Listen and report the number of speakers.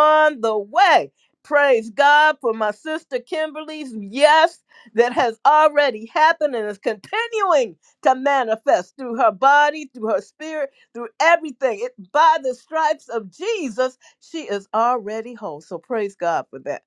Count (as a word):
one